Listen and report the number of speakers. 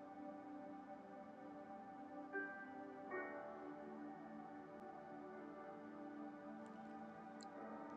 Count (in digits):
0